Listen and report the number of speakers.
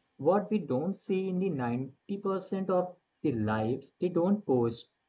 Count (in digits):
1